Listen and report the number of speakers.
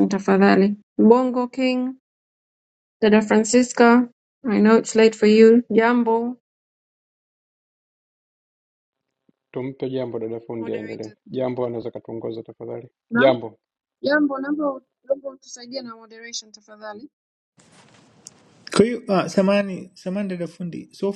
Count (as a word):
three